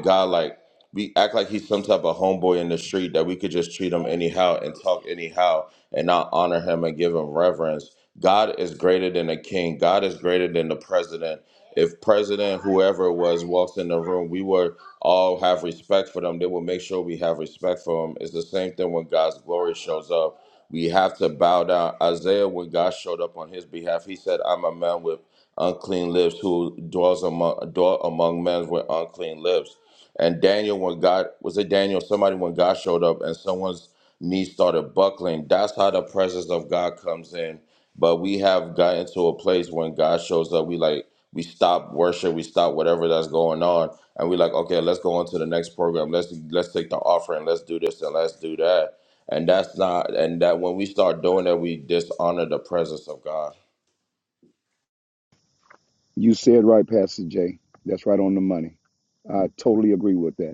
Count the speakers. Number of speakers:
two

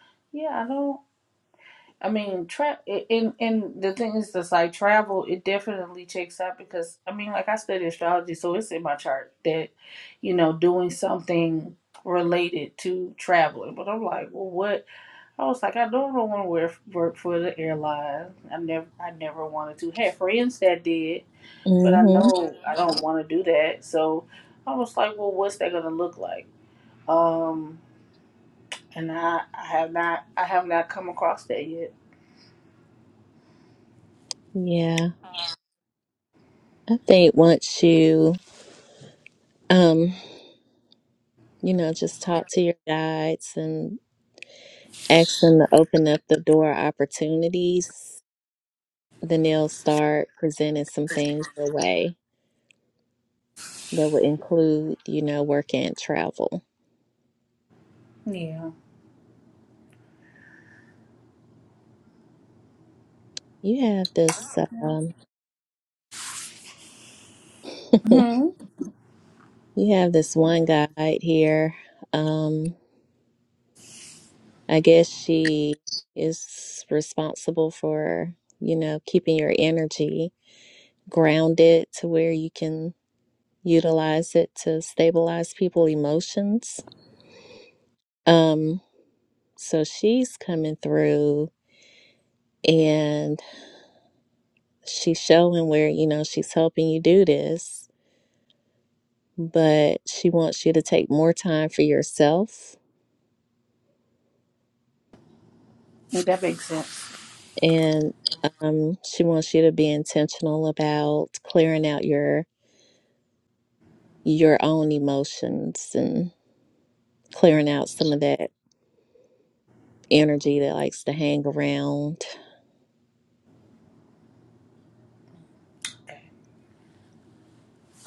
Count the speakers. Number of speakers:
two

